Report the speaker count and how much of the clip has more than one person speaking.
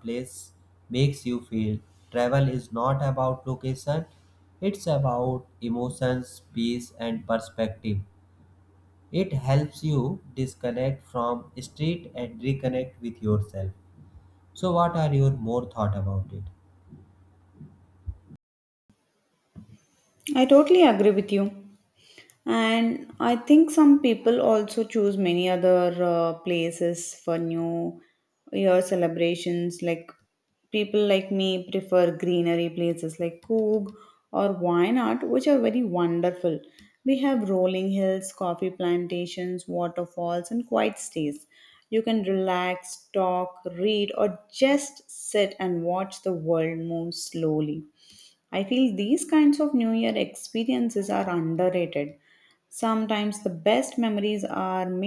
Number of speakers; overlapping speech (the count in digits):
2, no overlap